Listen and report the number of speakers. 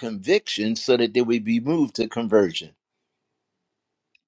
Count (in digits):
1